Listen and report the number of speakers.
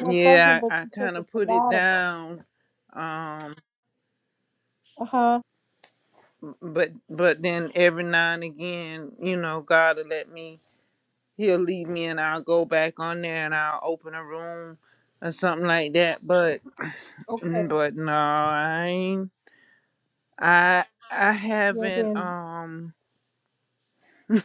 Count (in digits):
2